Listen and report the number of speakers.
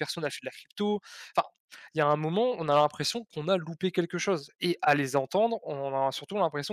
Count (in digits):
1